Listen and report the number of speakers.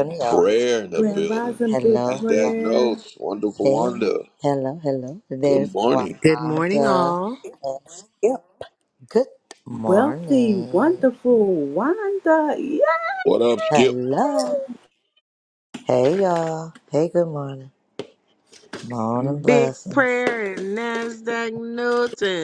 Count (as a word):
four